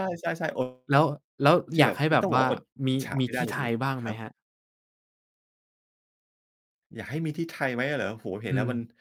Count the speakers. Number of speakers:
two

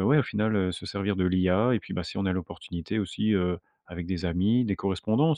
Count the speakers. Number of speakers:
one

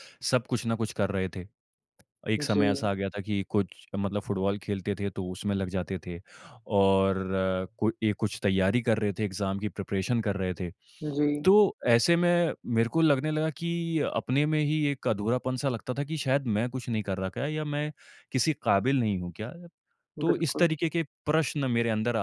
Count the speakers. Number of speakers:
two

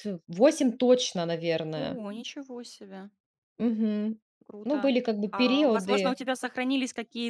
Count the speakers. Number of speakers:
two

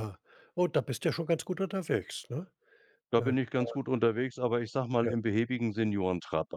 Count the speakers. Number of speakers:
two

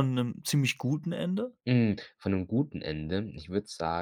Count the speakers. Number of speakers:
two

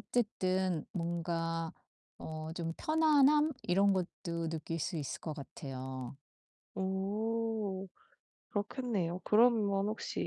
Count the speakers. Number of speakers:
two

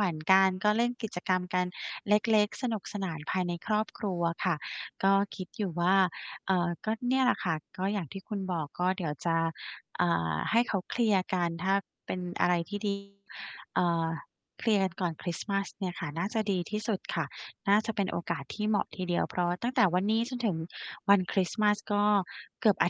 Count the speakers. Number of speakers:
one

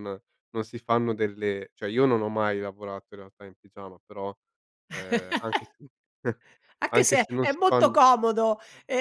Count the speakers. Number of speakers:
two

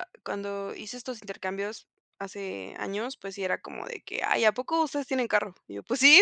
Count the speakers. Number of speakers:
one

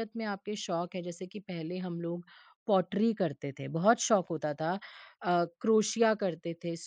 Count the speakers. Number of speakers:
one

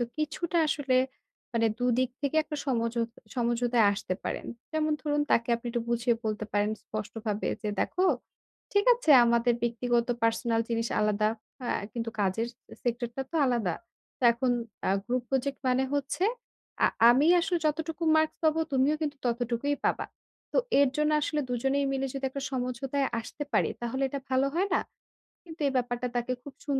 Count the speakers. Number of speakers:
one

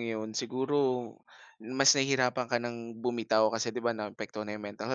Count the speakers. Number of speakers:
one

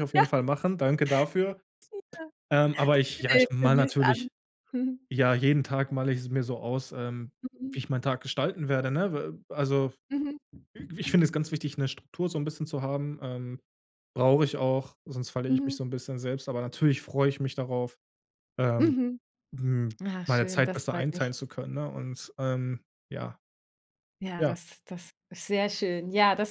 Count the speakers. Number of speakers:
two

